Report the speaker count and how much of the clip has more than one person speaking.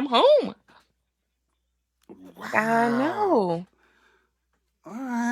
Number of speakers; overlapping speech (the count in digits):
2, about 17%